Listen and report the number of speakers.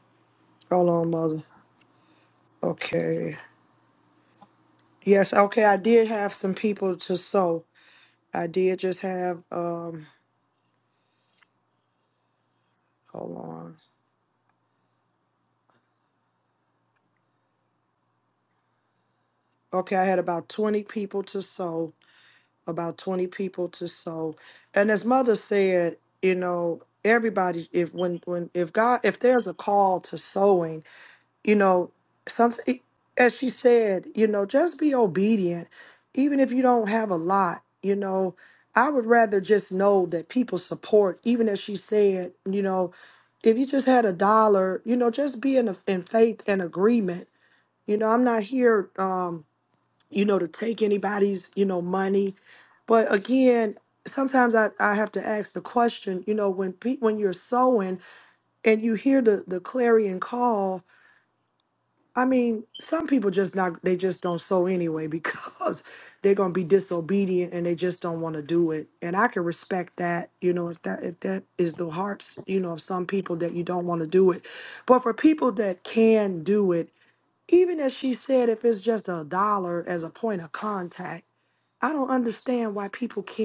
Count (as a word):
one